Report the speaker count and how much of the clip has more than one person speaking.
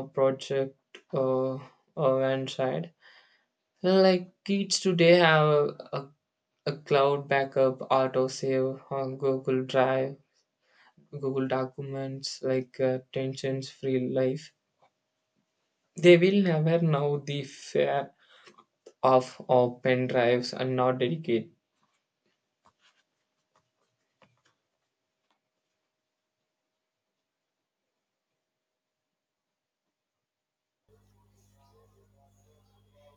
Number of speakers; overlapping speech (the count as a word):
one, no overlap